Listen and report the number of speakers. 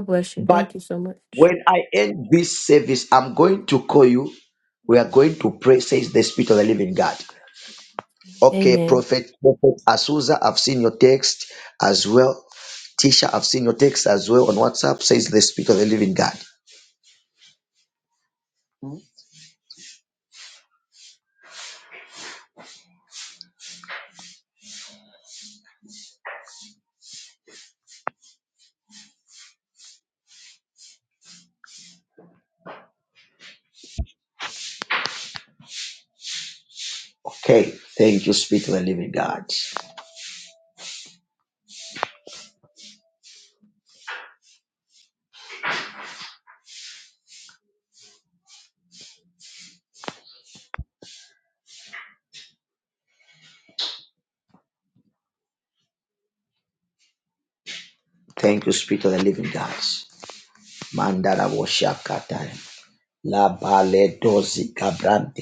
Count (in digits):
2